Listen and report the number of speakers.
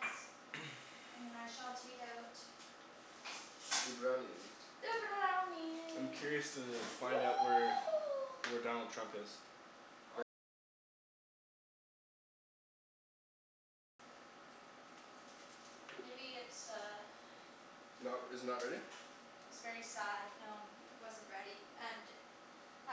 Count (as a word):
three